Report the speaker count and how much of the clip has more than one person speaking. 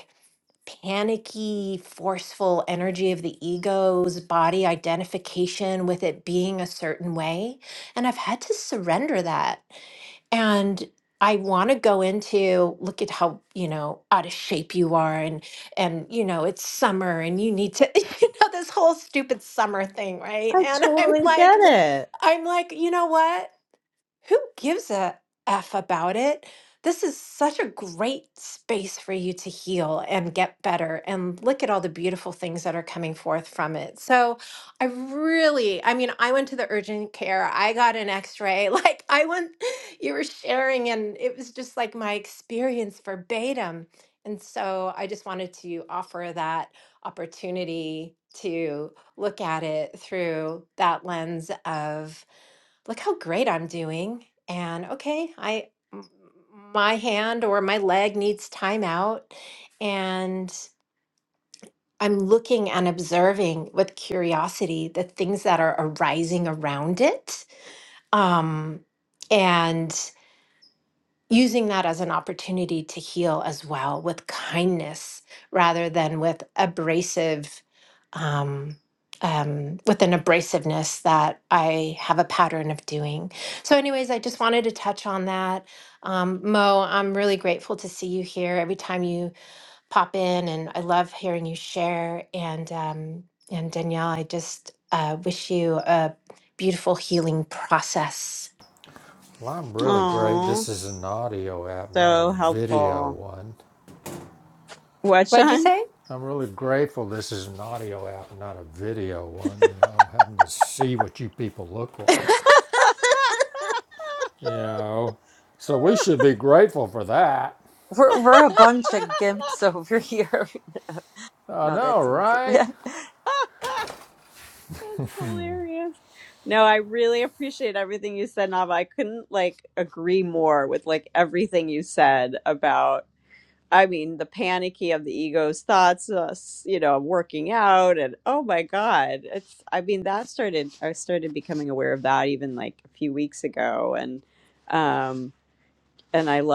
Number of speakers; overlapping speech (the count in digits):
4, about 3%